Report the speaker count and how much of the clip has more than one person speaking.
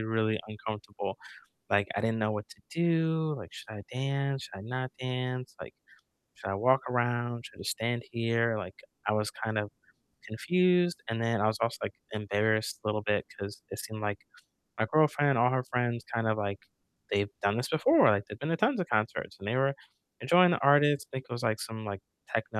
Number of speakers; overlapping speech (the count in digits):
1, no overlap